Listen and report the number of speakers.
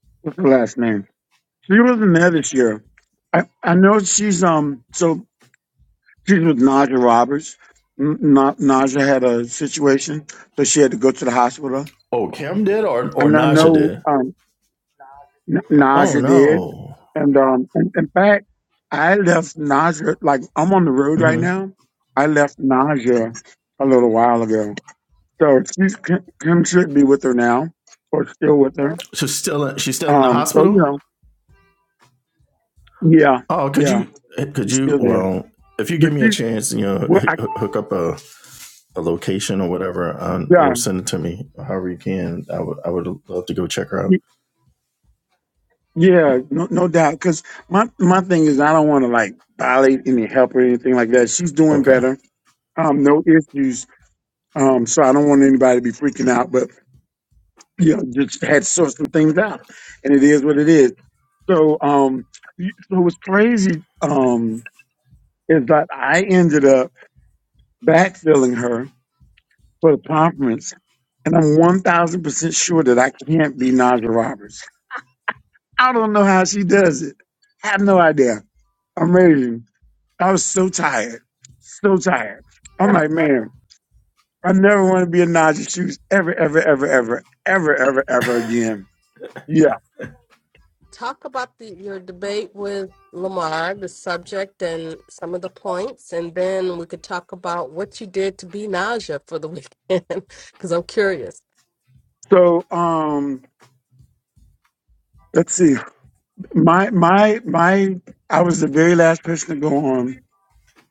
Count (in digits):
3